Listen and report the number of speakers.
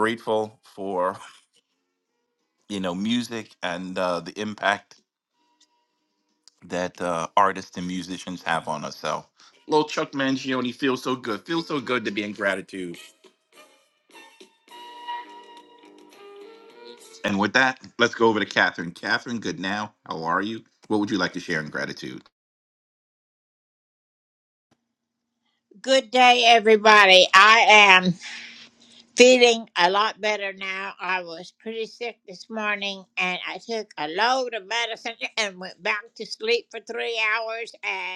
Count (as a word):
two